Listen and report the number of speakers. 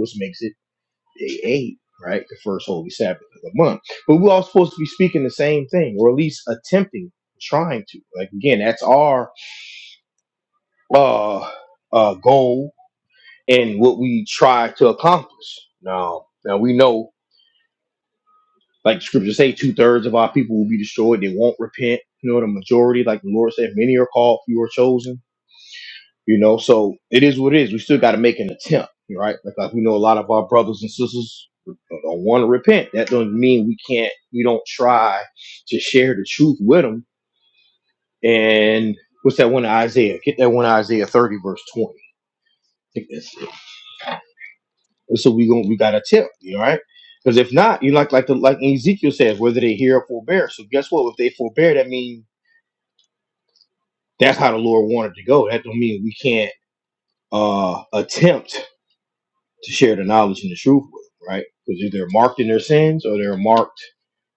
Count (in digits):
1